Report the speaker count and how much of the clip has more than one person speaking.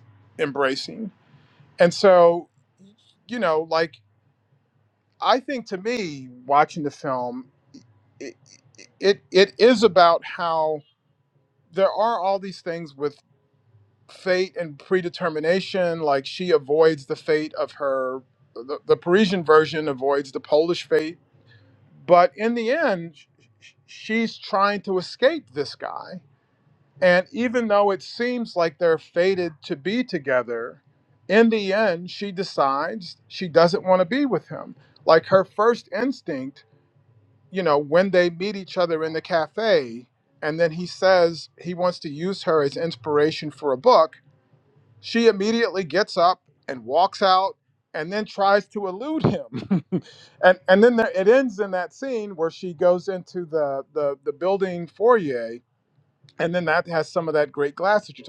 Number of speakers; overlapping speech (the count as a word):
one, no overlap